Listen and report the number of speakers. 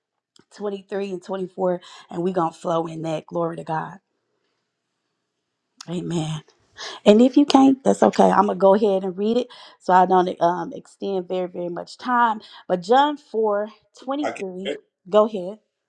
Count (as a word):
one